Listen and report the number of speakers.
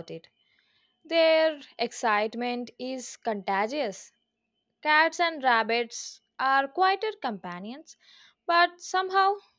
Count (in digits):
1